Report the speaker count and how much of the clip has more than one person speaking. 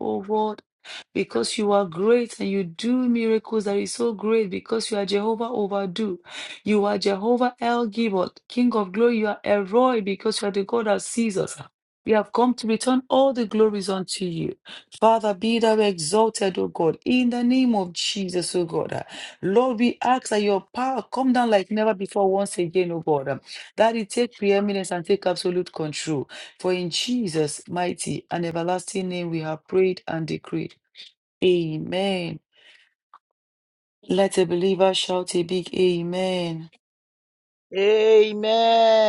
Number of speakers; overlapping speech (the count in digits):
2, no overlap